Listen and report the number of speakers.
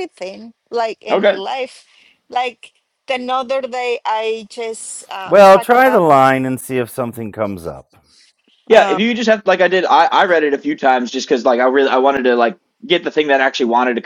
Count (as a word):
three